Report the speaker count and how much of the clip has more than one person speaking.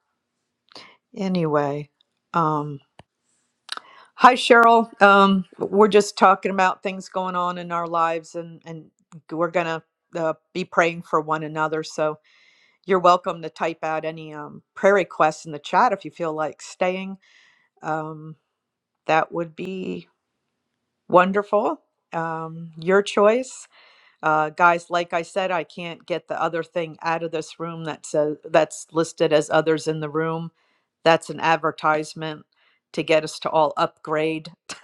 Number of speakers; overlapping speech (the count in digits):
1, no overlap